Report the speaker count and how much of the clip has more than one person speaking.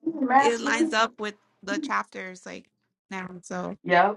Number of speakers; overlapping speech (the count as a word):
two, about 13%